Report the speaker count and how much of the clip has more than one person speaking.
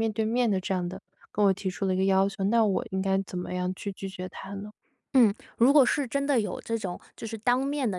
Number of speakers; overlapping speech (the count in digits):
2, no overlap